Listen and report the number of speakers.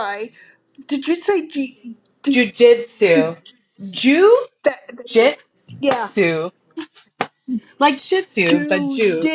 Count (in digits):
2